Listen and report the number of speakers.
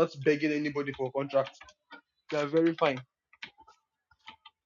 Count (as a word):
one